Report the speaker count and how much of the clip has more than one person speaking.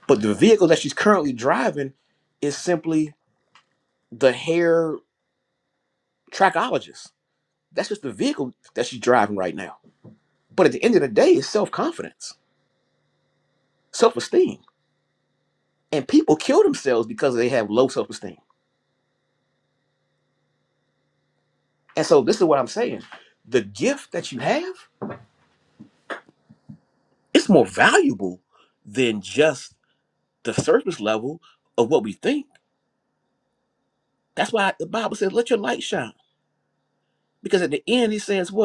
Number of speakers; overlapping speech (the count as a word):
one, no overlap